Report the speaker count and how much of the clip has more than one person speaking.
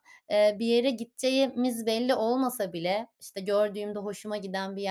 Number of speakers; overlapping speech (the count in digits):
1, no overlap